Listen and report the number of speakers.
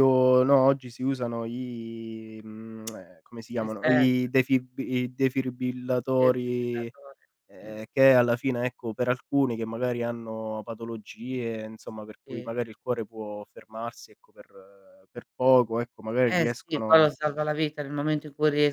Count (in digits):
2